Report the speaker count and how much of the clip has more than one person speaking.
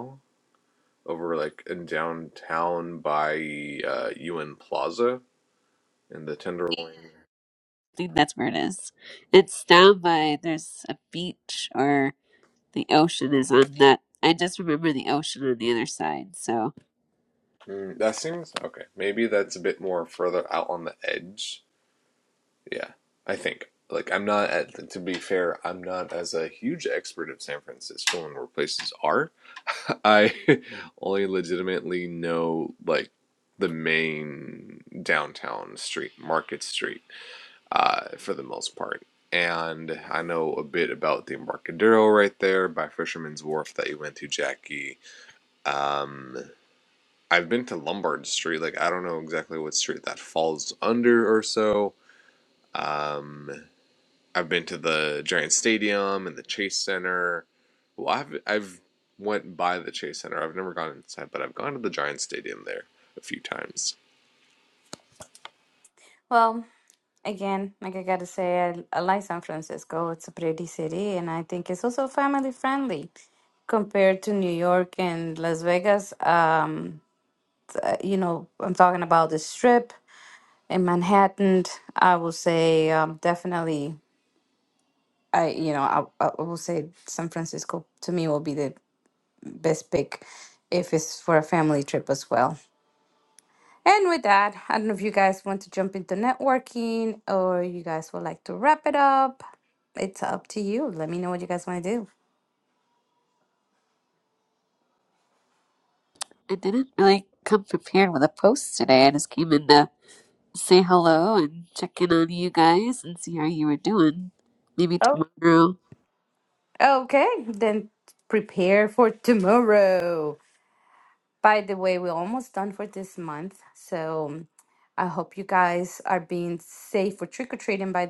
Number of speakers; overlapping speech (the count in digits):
3, under 1%